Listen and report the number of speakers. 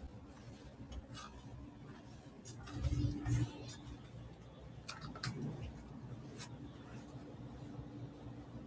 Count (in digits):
0